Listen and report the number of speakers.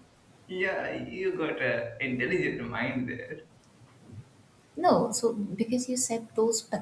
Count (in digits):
2